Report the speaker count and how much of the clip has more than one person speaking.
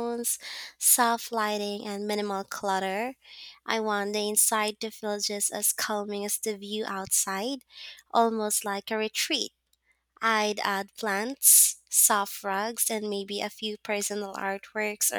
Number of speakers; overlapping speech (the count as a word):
one, no overlap